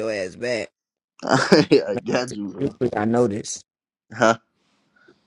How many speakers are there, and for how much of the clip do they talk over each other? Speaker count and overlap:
2, about 5%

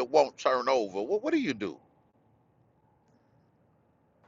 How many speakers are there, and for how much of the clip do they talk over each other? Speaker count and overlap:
1, no overlap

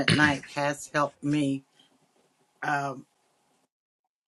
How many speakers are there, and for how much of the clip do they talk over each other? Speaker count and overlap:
1, no overlap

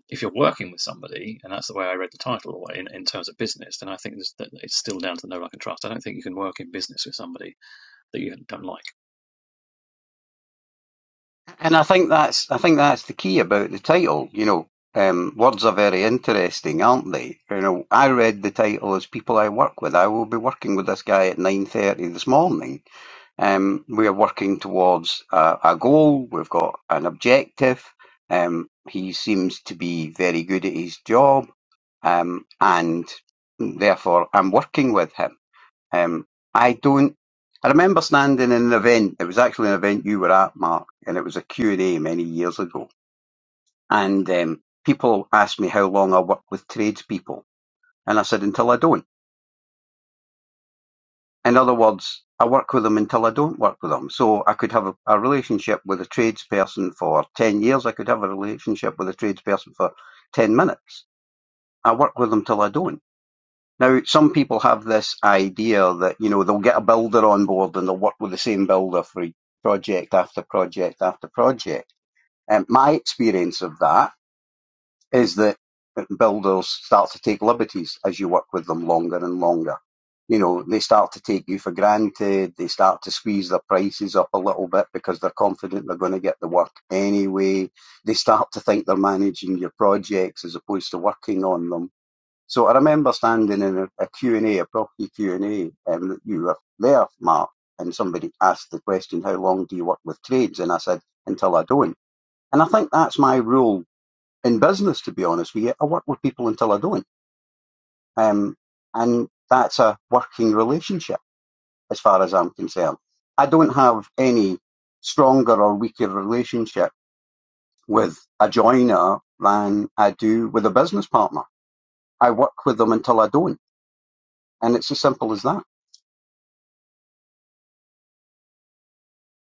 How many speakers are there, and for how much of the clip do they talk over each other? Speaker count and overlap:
2, no overlap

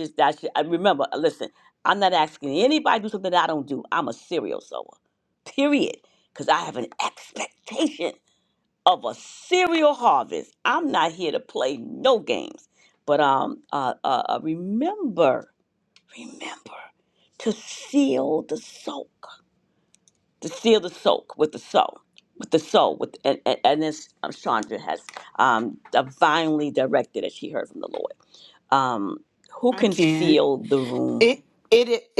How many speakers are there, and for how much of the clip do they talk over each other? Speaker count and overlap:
2, about 2%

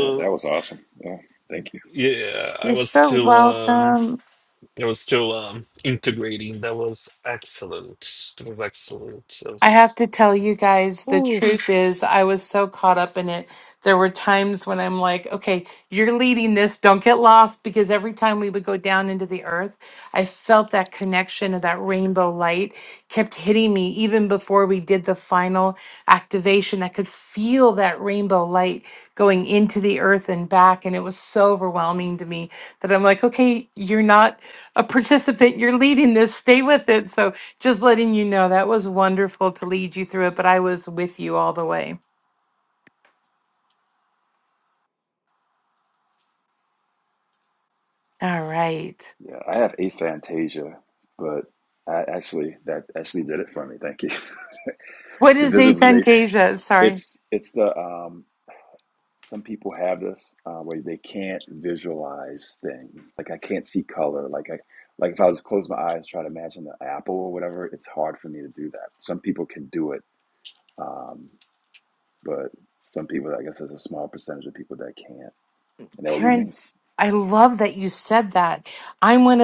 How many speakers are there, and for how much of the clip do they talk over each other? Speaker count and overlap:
3, about 4%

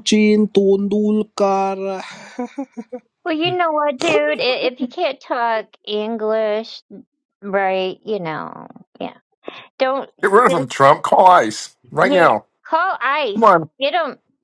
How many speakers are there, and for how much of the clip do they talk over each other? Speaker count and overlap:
3, about 6%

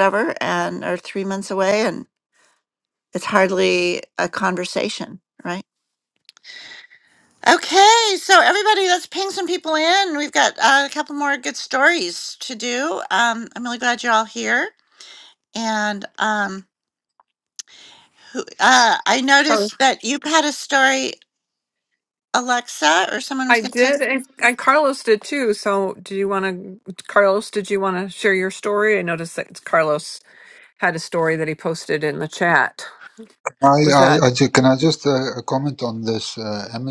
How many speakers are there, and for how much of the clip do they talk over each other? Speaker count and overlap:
3, about 3%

